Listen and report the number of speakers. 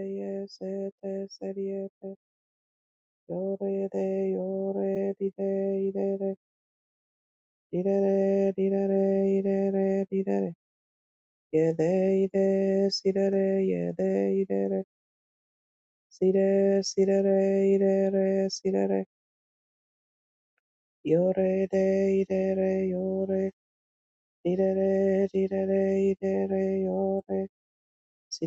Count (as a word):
one